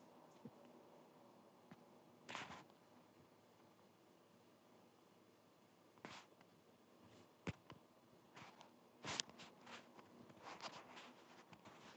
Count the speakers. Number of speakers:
zero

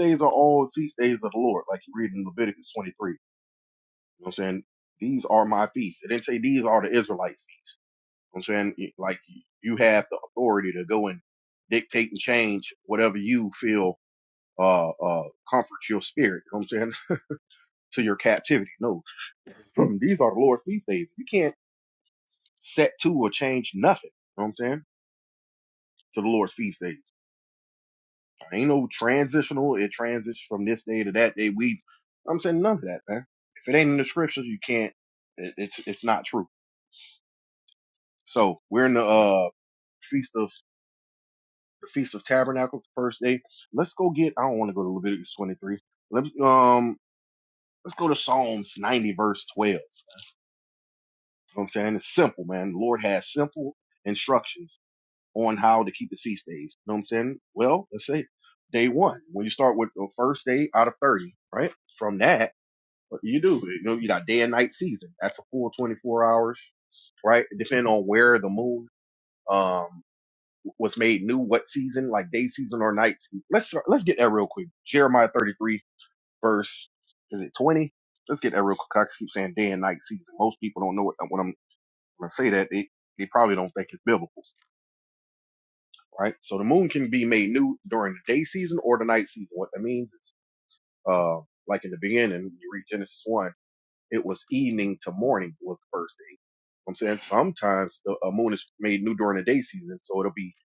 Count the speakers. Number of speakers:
one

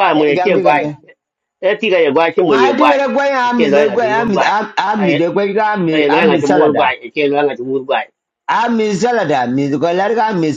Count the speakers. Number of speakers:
two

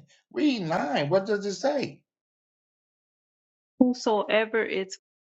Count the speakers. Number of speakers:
two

